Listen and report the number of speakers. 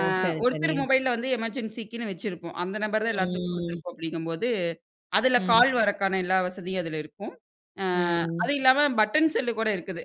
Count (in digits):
2